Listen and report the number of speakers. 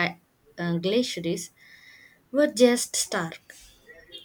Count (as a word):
one